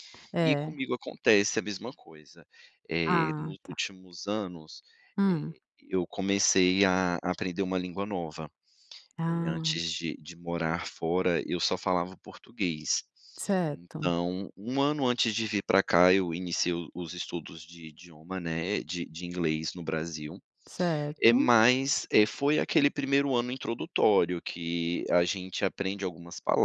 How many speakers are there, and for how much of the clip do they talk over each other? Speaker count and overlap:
two, about 9%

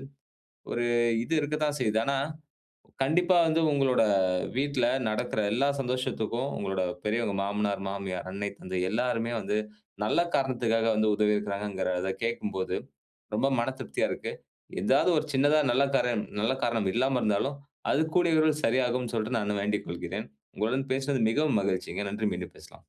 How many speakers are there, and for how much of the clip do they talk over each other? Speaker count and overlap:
one, no overlap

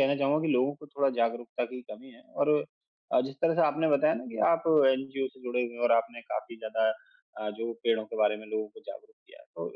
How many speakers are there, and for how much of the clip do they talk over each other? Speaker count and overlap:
one, no overlap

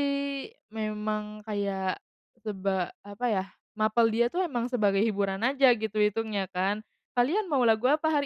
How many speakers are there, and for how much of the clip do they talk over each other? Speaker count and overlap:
one, no overlap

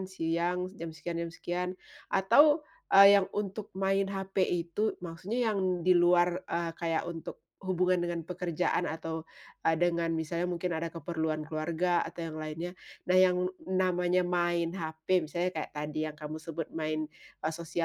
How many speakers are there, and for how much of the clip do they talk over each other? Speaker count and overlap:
one, no overlap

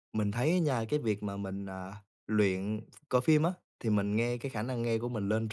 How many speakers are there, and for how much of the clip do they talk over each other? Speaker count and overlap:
one, no overlap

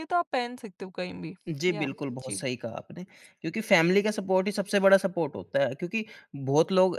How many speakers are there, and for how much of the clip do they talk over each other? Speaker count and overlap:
two, about 4%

